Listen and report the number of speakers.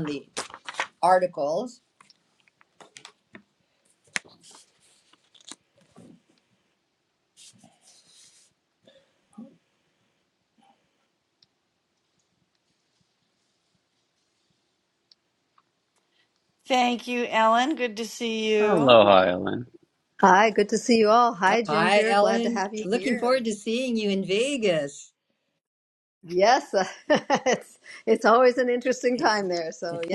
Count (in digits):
4